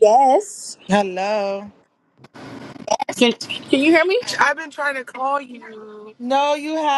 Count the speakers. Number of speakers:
3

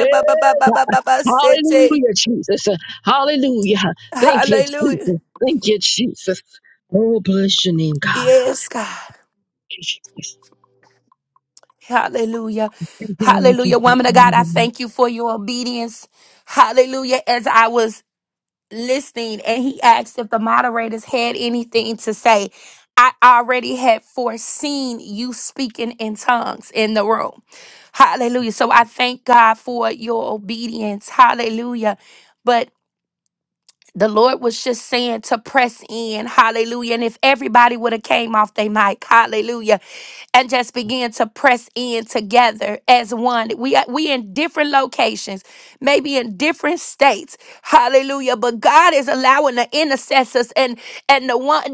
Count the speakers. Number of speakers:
2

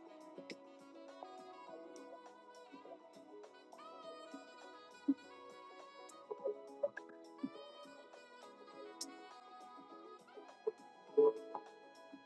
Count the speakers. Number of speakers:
0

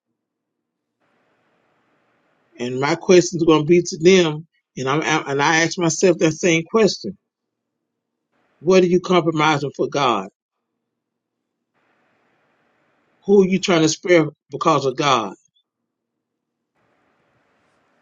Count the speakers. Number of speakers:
1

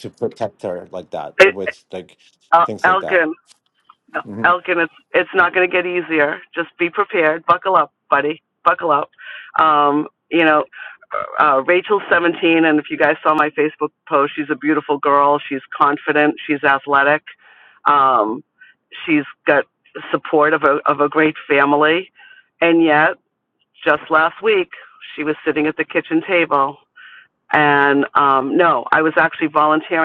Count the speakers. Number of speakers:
2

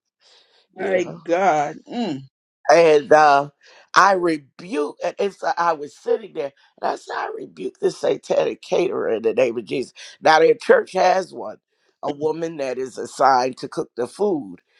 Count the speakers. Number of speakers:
2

